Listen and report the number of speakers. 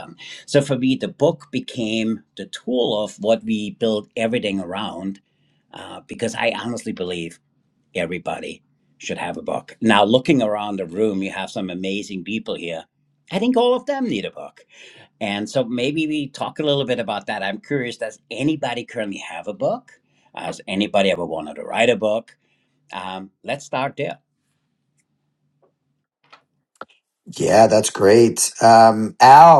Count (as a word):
two